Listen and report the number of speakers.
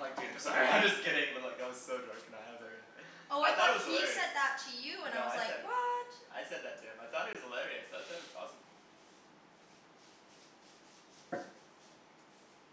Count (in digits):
2